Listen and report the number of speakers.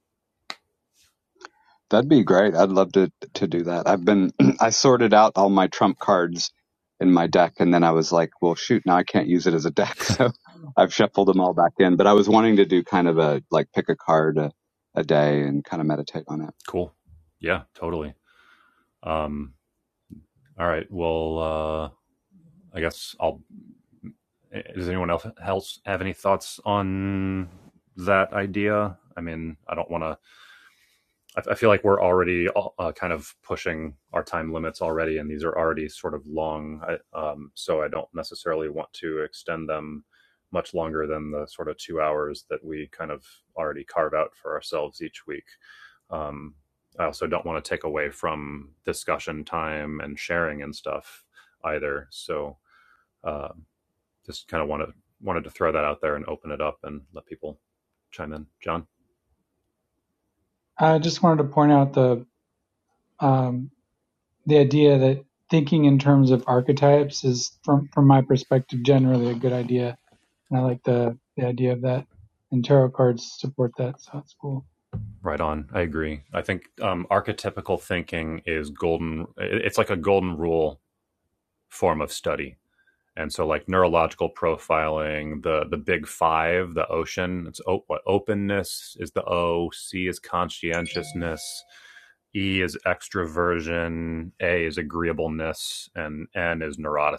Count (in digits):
3